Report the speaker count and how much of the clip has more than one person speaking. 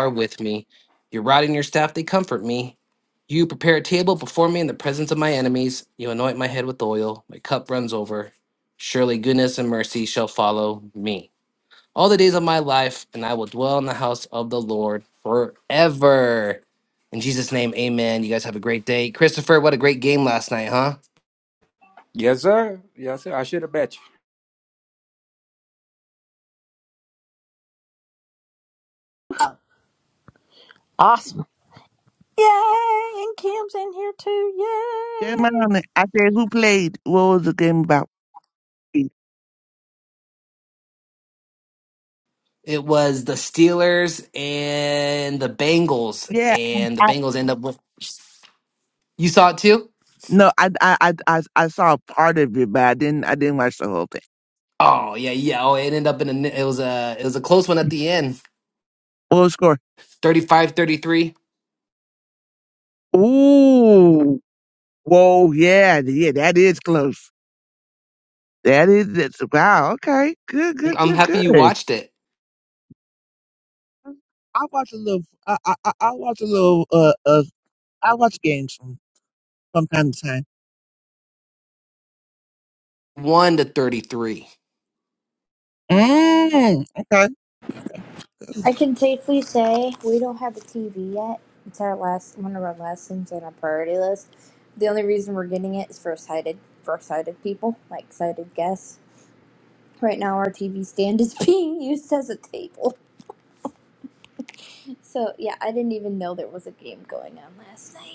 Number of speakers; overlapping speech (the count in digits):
5, about 2%